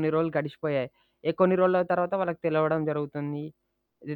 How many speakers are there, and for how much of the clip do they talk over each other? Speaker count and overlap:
one, no overlap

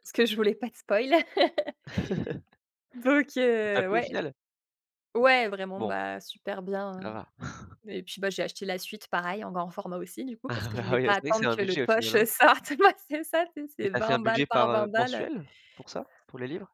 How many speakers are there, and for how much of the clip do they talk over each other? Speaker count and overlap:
two, about 24%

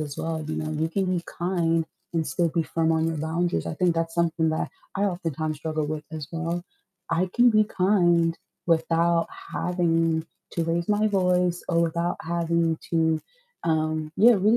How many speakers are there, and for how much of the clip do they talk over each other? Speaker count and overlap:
one, no overlap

